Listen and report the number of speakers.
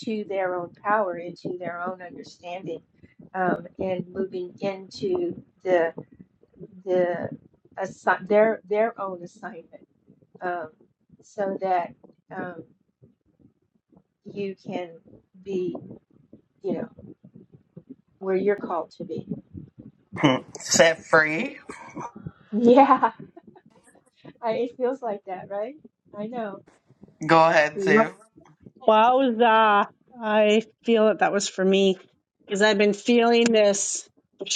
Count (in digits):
3